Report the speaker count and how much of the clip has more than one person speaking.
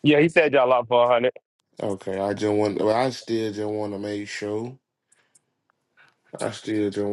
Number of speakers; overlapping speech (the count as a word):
two, no overlap